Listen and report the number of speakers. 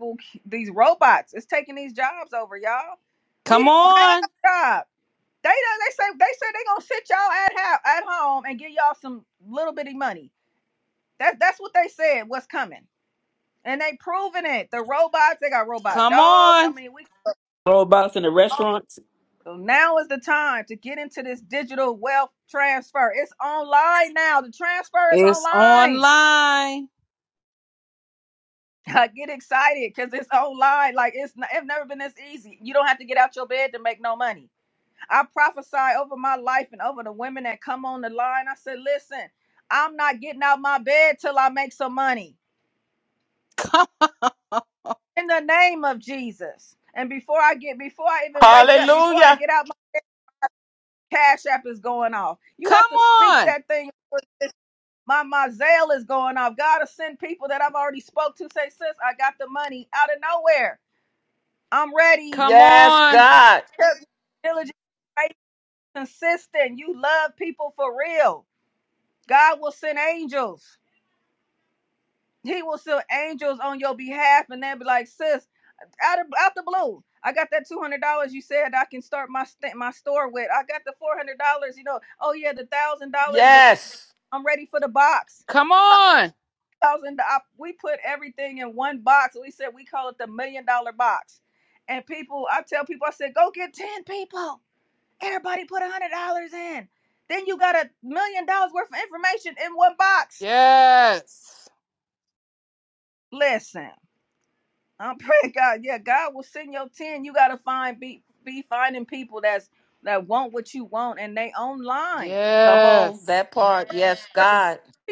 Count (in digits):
4